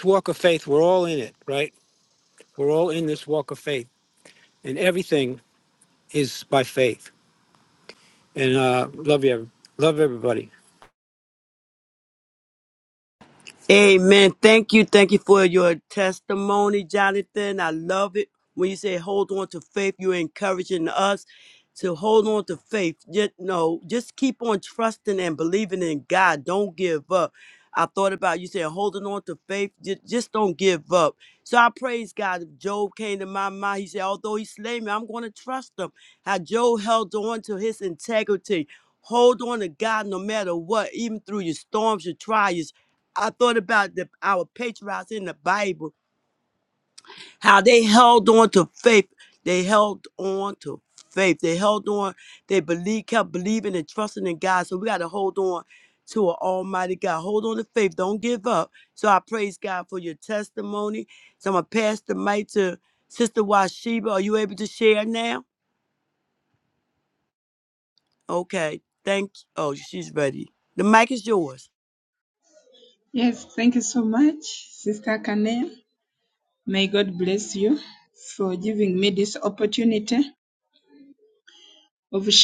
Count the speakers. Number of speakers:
three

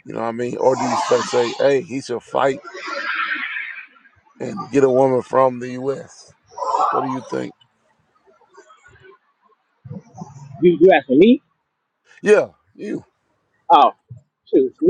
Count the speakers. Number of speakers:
two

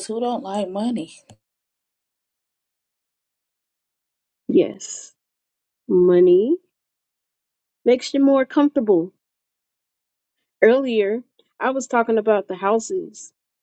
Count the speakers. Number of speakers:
two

